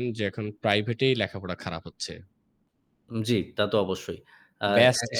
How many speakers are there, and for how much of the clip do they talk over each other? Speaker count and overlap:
2, about 10%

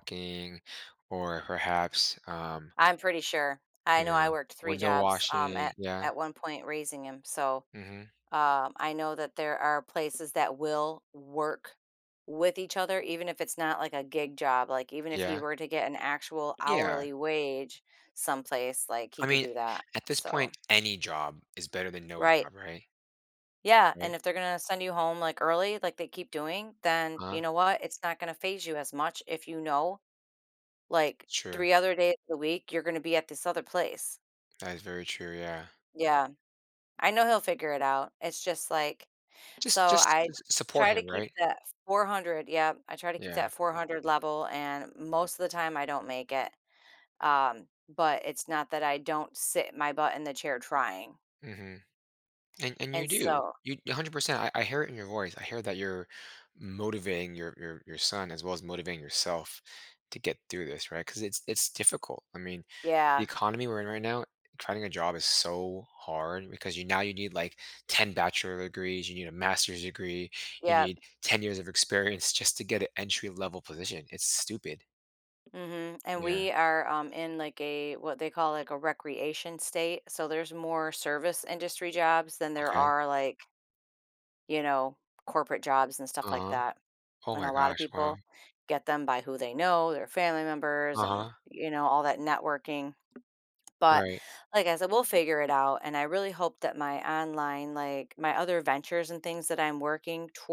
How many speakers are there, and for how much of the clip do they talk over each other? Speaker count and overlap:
2, about 9%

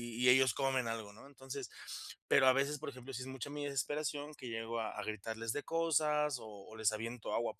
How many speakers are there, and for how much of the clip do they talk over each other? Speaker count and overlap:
1, no overlap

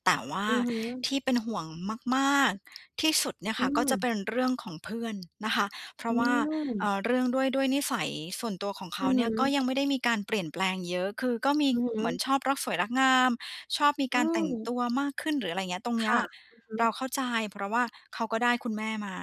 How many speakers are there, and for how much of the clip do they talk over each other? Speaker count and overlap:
2, about 11%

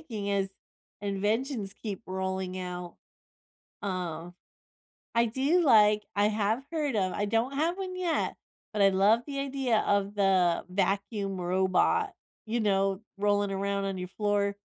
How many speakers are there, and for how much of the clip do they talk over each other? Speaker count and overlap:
1, no overlap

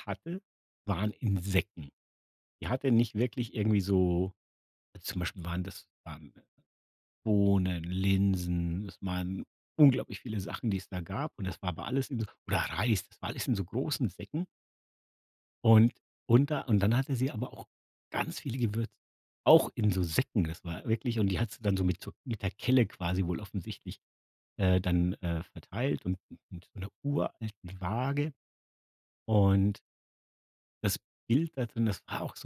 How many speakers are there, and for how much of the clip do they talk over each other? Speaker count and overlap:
1, no overlap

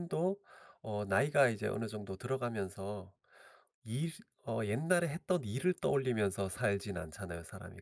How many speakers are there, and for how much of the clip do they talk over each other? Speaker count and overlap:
1, no overlap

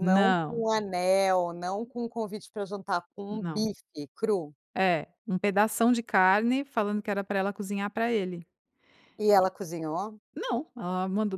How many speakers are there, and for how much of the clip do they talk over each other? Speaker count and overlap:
2, about 8%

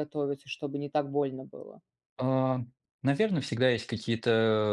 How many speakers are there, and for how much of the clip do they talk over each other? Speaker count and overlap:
2, no overlap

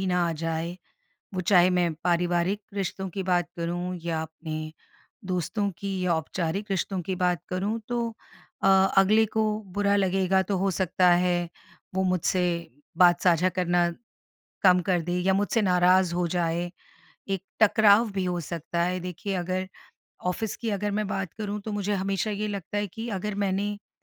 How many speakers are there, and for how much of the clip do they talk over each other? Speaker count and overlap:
1, no overlap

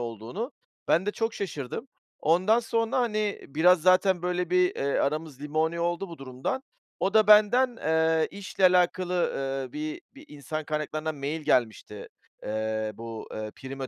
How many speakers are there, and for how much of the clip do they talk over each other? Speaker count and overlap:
1, no overlap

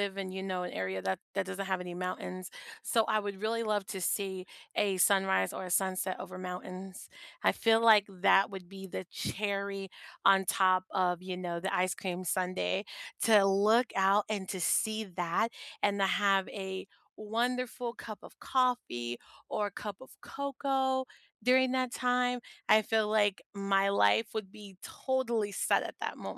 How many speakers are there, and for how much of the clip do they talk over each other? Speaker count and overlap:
1, no overlap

